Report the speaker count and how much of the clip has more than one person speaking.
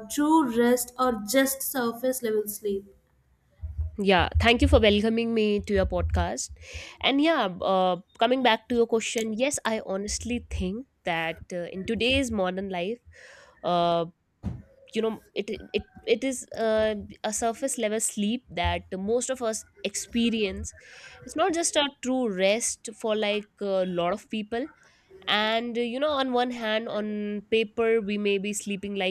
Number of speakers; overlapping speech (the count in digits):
2, no overlap